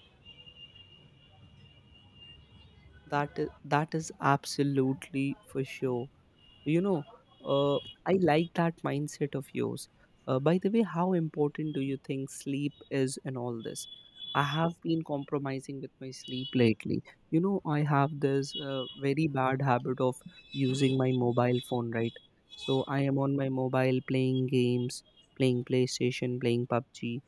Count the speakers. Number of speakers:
one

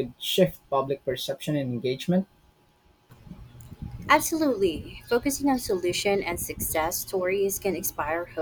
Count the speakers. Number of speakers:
two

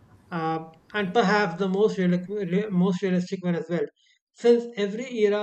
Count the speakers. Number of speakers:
one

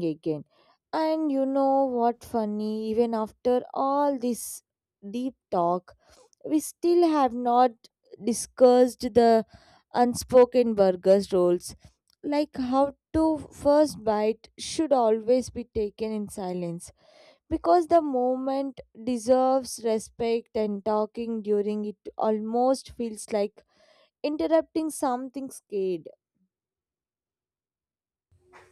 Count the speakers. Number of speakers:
one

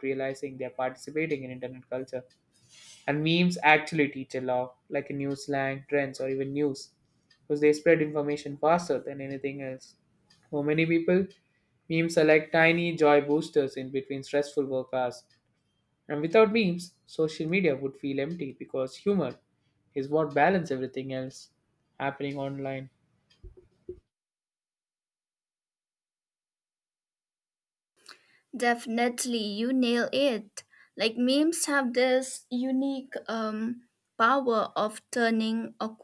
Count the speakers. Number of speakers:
two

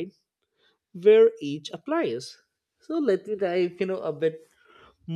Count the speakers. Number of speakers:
one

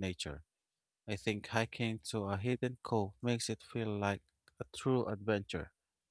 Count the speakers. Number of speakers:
one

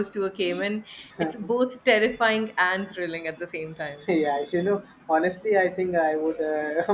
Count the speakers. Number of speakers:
two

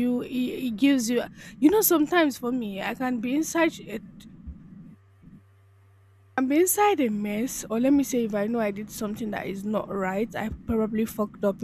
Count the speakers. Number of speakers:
one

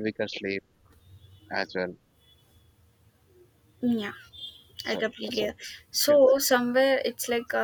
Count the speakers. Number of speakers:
two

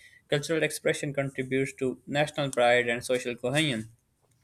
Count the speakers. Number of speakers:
one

